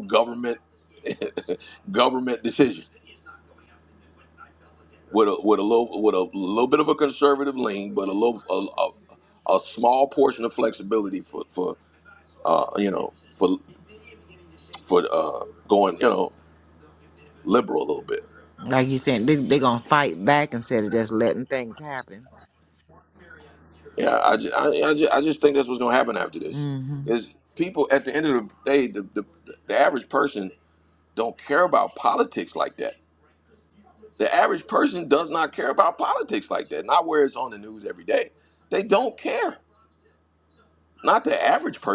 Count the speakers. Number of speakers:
two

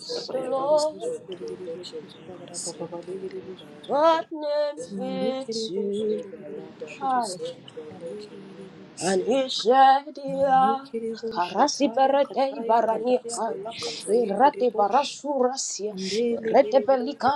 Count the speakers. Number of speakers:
three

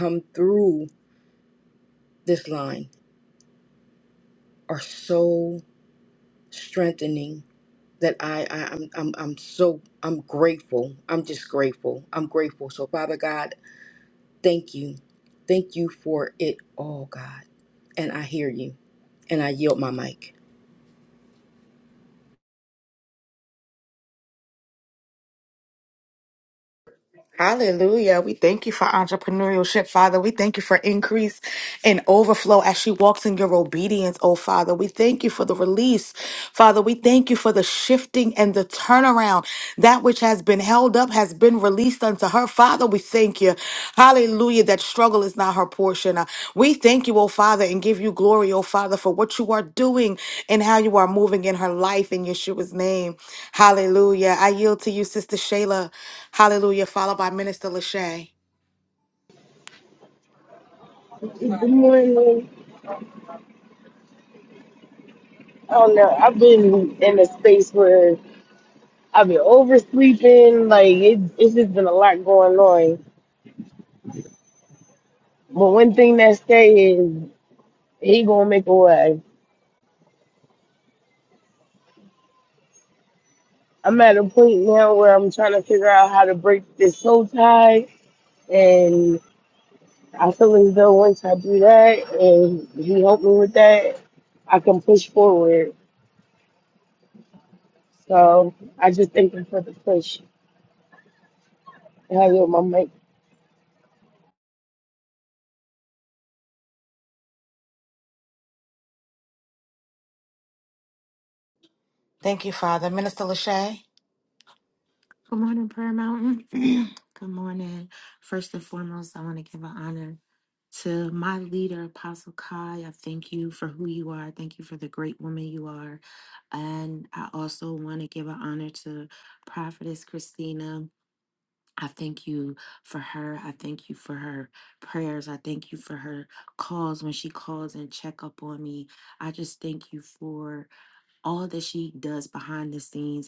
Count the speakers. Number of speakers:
four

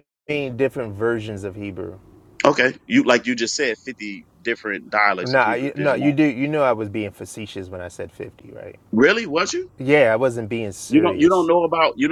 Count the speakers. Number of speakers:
two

